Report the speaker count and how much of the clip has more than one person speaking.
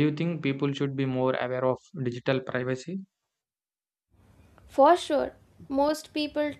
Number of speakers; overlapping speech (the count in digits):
2, no overlap